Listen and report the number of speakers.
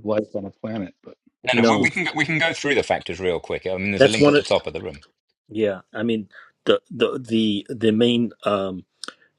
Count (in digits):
3